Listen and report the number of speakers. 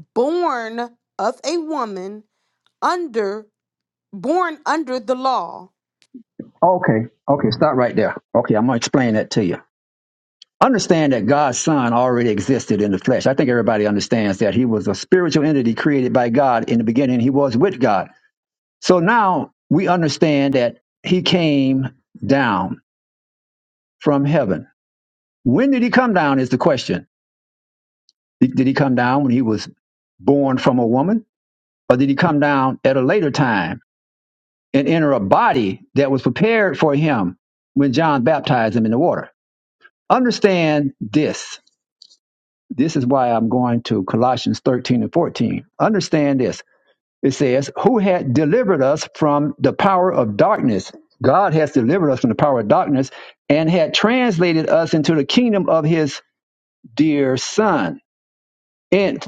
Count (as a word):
two